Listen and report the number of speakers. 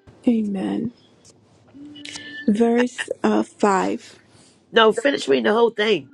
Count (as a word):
two